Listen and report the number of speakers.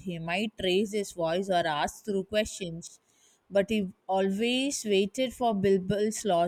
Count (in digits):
1